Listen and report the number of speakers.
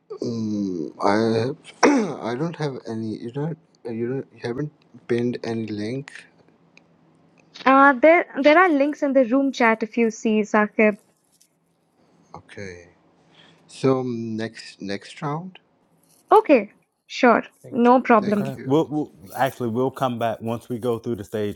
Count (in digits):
3